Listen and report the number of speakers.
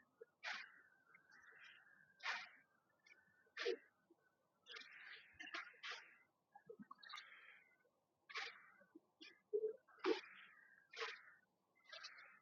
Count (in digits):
0